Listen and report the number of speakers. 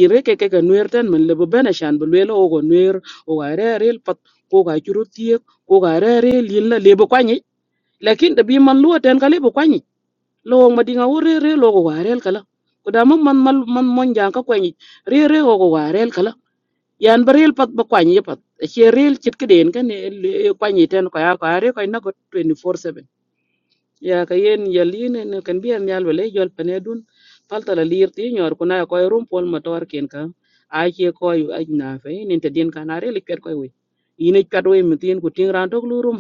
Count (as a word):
one